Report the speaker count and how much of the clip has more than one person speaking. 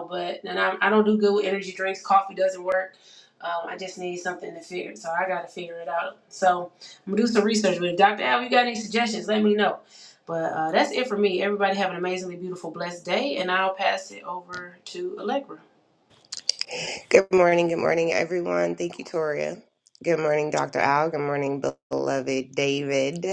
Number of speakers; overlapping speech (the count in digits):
2, no overlap